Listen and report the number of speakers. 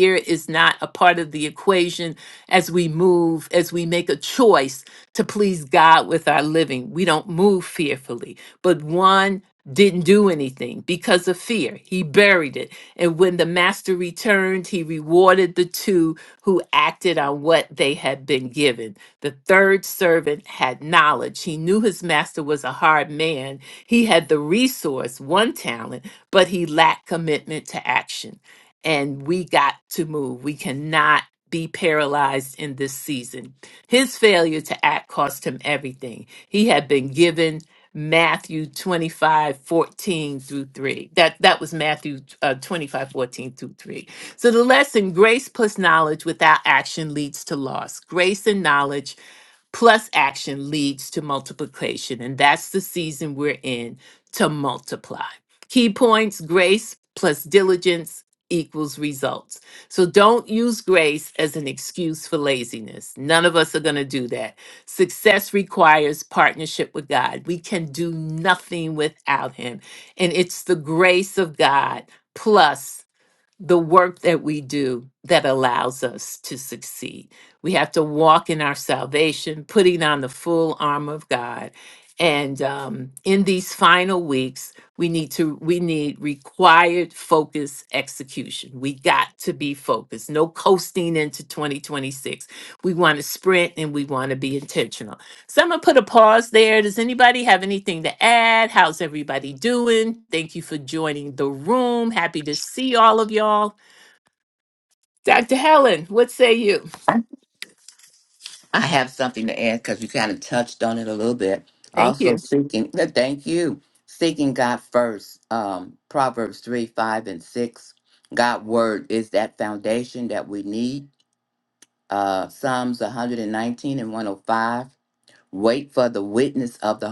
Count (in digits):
2